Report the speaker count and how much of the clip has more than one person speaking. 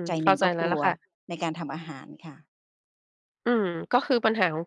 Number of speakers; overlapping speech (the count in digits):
2, about 19%